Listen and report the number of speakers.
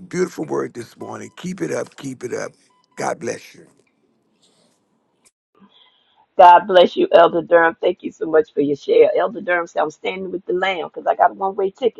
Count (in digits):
2